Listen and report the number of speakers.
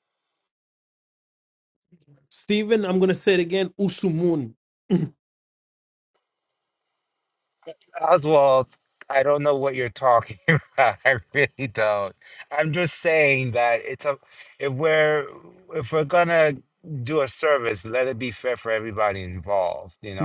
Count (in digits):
2